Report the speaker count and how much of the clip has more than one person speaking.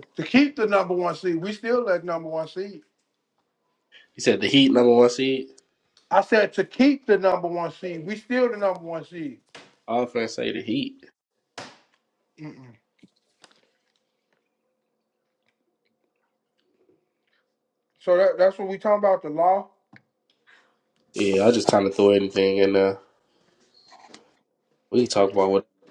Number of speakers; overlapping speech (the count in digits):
2, no overlap